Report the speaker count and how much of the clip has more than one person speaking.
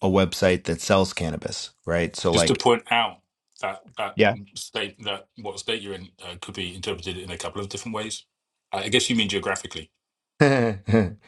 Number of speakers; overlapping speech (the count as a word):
two, about 2%